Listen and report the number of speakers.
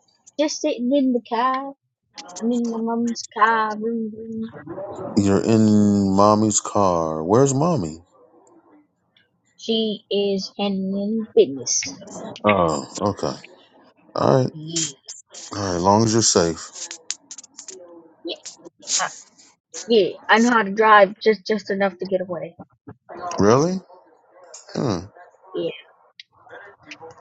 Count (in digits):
2